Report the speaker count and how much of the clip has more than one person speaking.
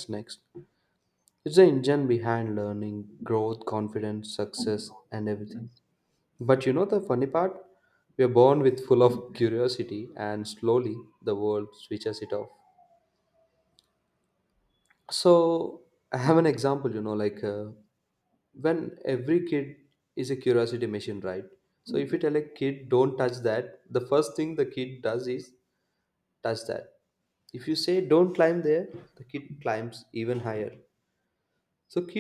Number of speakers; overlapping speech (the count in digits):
1, no overlap